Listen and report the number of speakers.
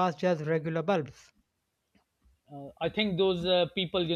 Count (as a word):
two